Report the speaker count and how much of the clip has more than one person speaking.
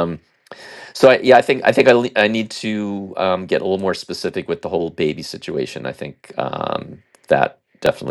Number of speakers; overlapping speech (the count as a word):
one, no overlap